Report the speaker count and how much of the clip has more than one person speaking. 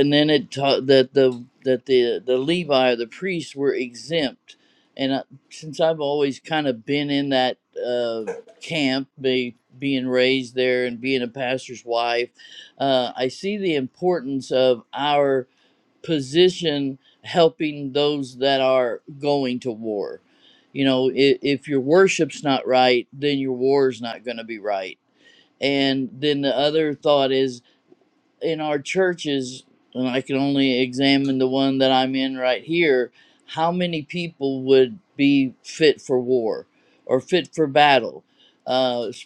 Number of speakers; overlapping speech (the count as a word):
one, no overlap